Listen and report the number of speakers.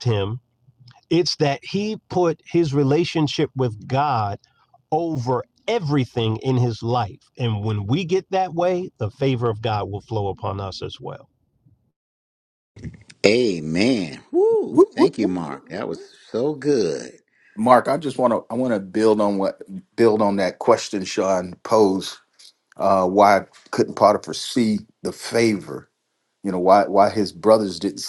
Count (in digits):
3